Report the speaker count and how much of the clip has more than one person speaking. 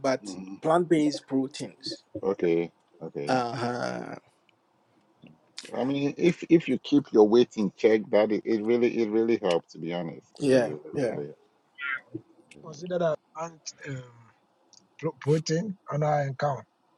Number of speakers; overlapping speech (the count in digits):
3, about 5%